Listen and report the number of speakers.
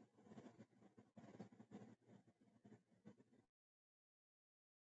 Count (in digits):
0